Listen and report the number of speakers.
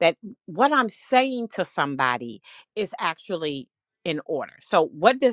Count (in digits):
1